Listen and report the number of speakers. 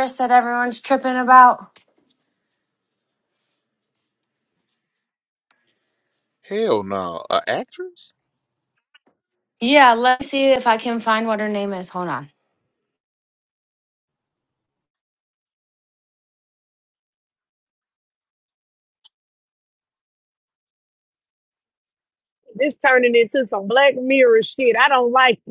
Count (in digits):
3